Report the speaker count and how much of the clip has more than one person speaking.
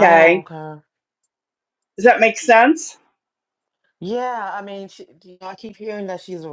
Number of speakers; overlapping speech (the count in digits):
2, about 6%